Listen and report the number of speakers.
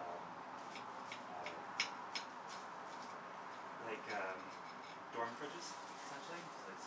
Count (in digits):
1